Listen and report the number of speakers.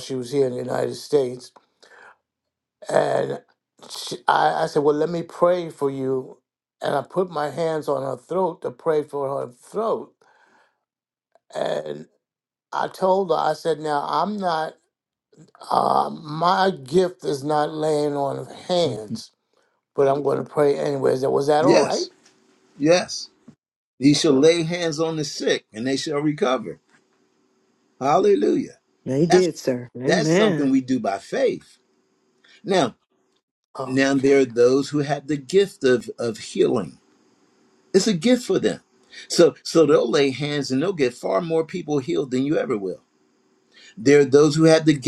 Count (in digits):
3